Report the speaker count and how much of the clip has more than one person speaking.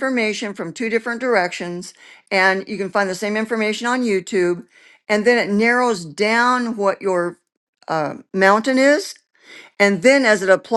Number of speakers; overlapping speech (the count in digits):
1, no overlap